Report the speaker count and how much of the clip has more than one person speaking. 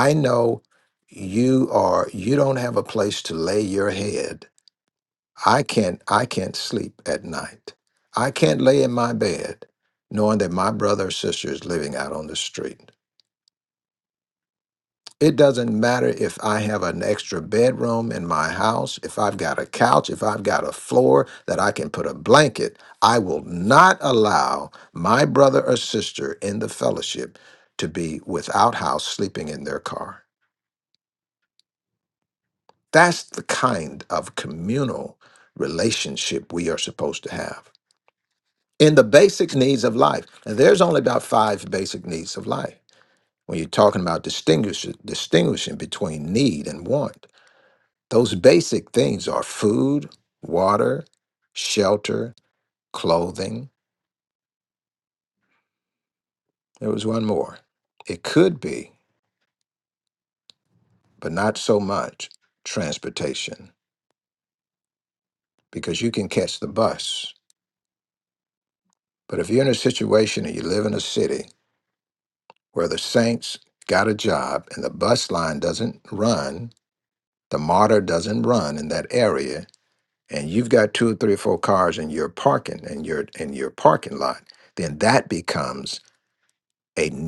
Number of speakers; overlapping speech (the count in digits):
1, no overlap